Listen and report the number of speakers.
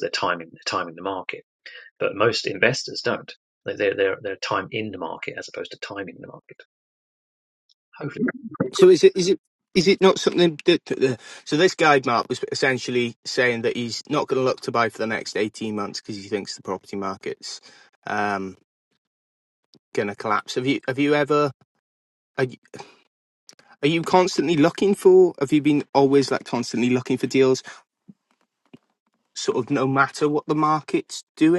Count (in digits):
2